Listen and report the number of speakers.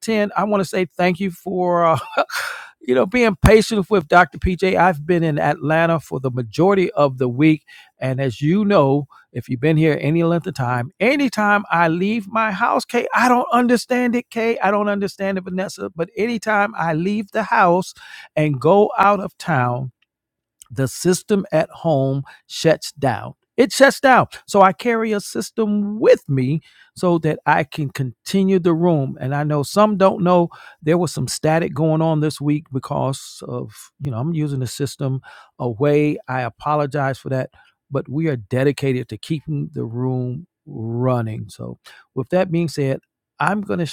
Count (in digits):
1